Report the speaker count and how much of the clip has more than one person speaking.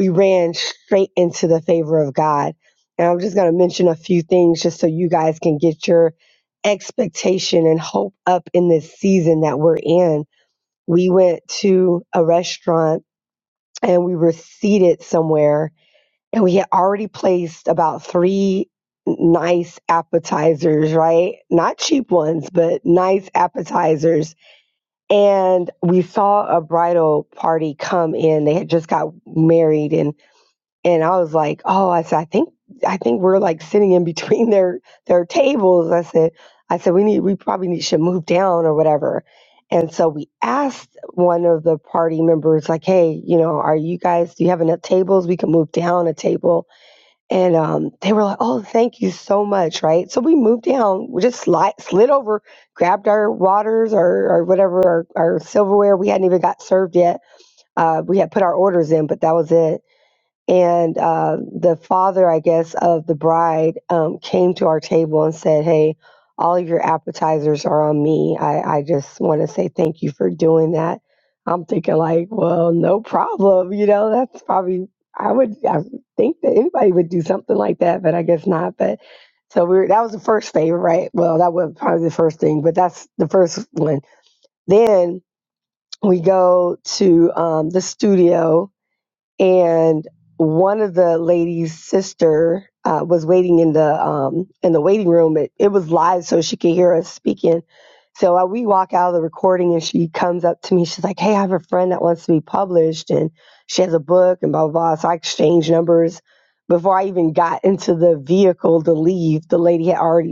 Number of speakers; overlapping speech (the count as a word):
one, no overlap